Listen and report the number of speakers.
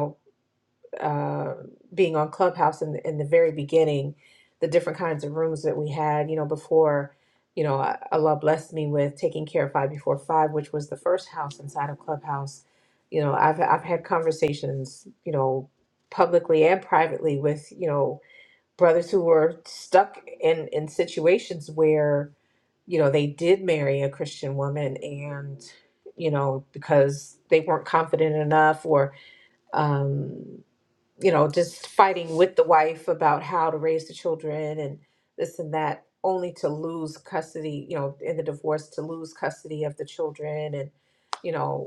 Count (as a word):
one